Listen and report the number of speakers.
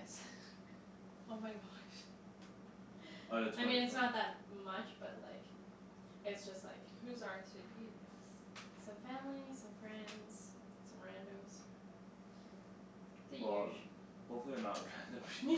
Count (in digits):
3